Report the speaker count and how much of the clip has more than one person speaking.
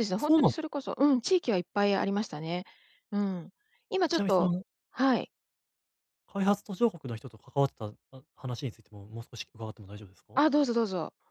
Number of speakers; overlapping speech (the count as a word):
two, about 7%